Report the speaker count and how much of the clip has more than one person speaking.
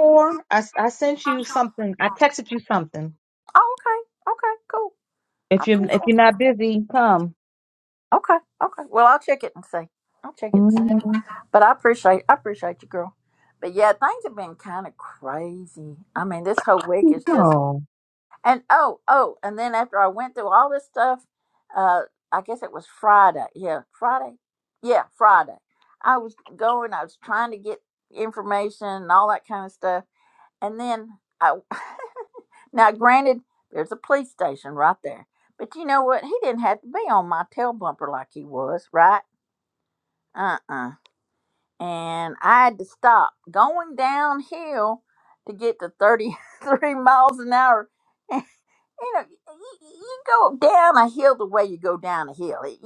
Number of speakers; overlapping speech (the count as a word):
two, about 2%